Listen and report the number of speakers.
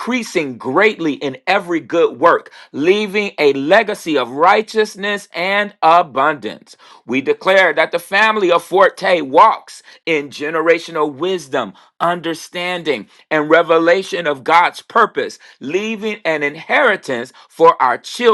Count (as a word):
one